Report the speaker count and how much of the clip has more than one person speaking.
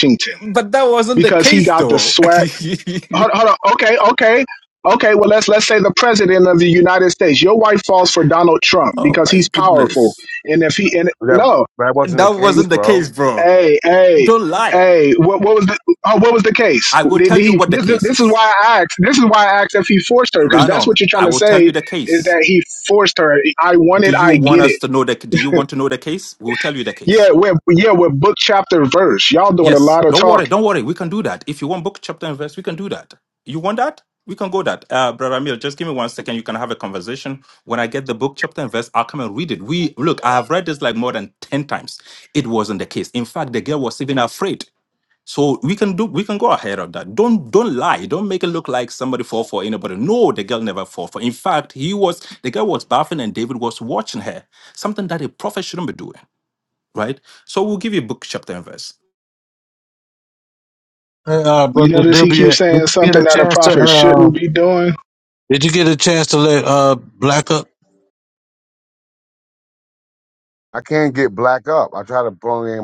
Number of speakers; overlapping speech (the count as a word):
four, about 14%